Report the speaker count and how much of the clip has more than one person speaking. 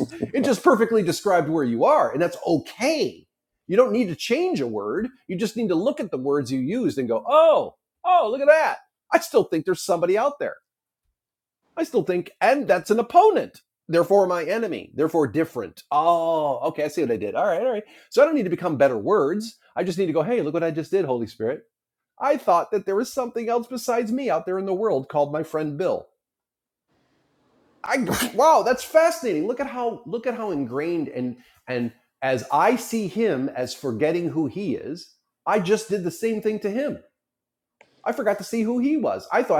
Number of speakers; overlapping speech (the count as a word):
one, no overlap